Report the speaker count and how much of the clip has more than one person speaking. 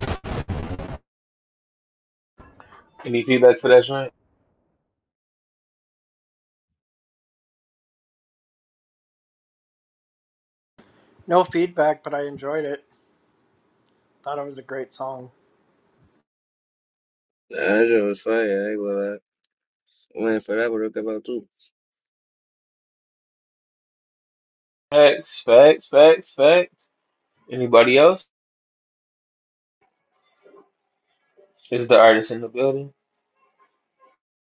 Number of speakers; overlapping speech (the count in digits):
3, no overlap